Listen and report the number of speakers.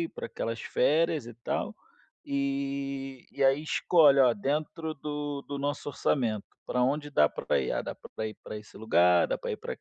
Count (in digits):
1